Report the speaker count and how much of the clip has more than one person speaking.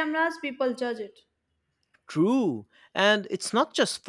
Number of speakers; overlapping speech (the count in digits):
2, no overlap